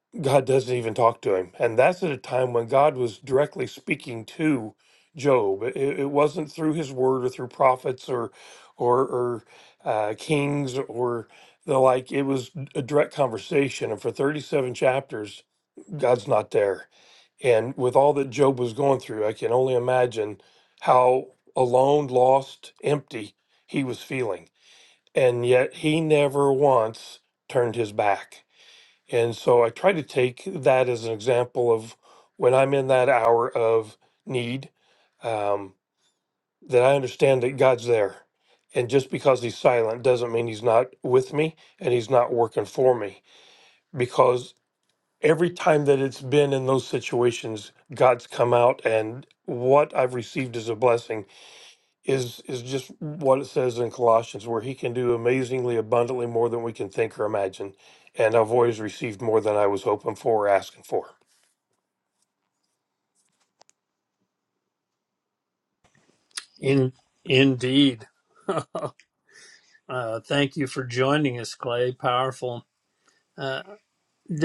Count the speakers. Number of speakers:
2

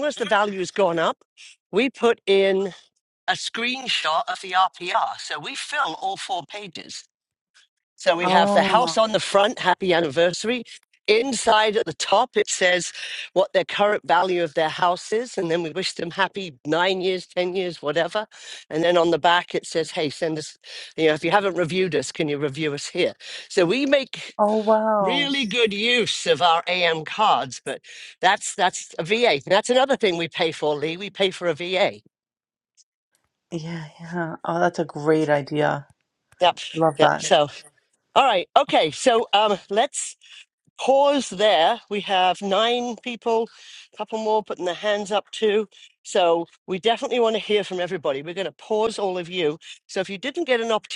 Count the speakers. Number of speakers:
2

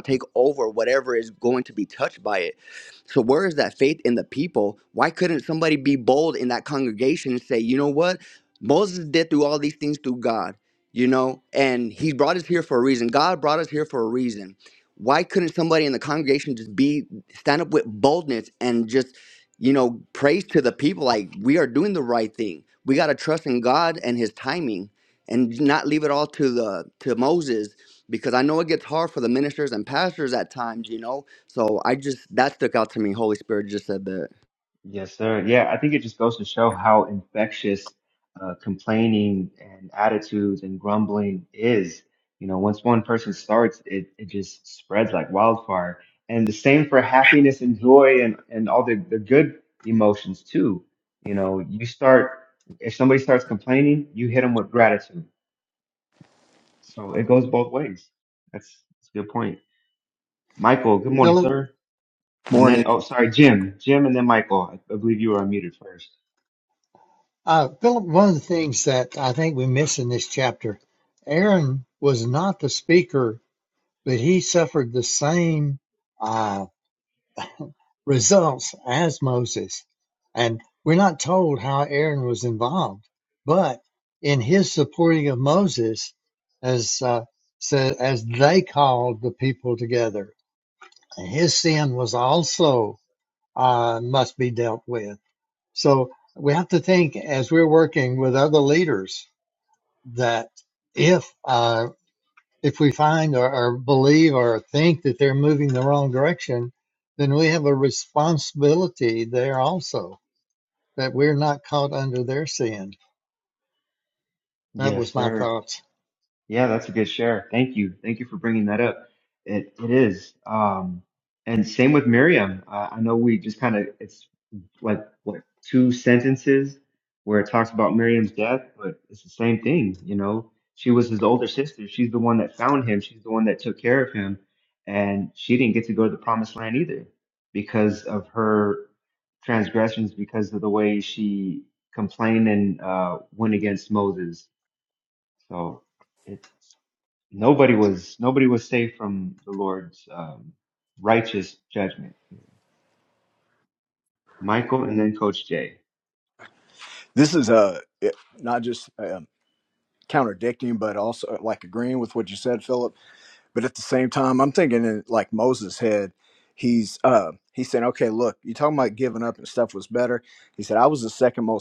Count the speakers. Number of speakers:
4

